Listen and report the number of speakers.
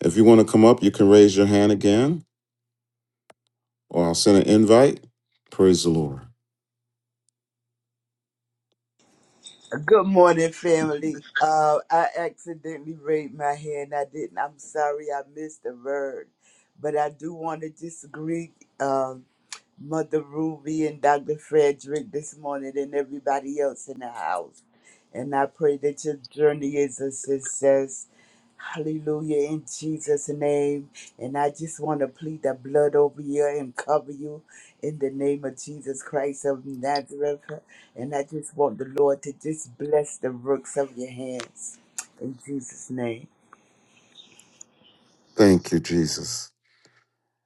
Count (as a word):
two